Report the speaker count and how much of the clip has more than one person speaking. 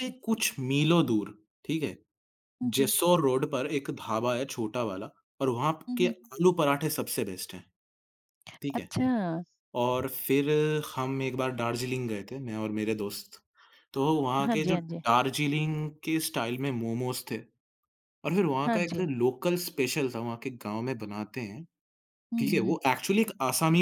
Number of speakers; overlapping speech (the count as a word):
two, about 9%